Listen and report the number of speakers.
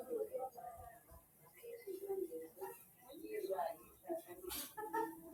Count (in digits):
0